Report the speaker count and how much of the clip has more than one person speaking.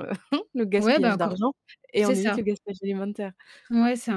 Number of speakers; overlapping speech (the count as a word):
two, about 25%